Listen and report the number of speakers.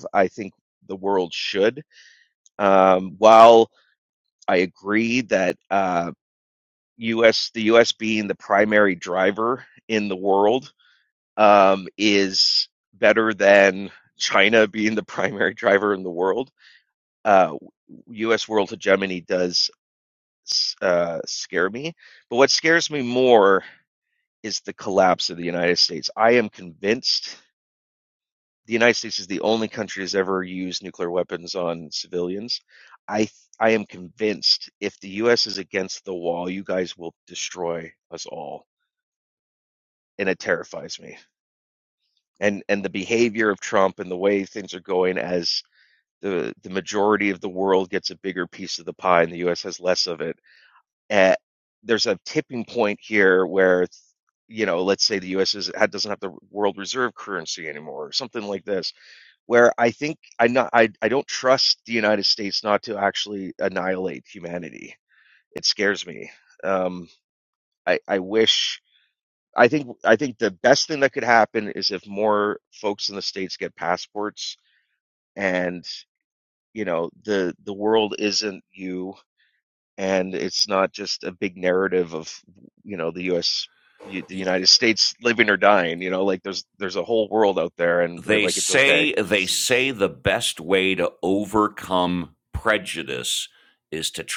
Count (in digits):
2